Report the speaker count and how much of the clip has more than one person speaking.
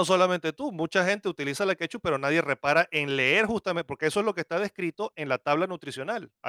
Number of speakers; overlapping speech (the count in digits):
1, no overlap